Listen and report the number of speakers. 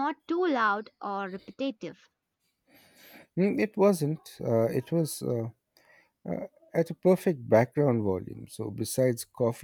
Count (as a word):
two